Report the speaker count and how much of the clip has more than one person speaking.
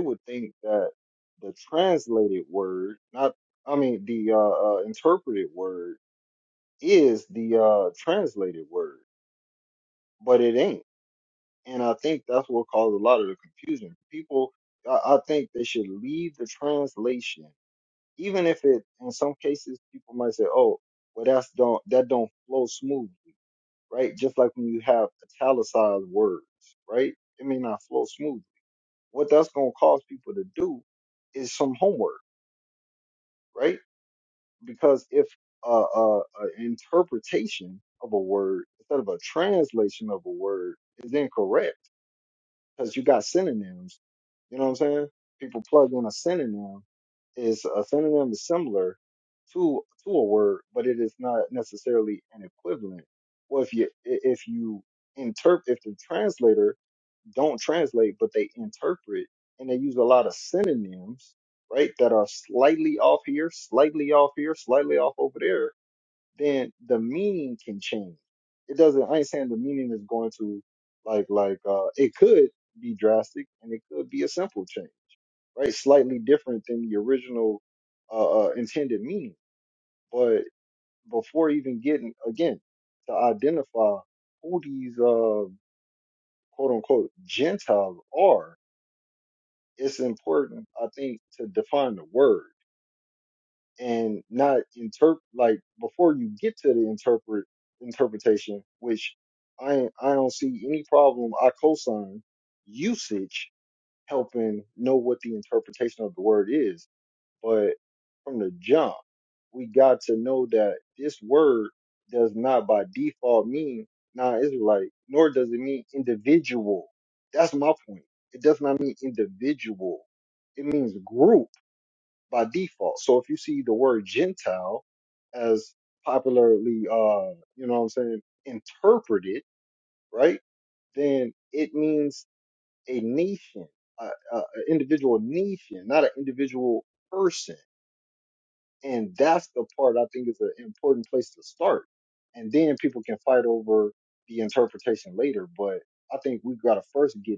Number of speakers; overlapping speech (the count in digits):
1, no overlap